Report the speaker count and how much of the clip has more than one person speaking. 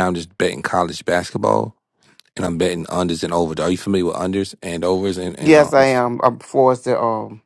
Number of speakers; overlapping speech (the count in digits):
2, about 6%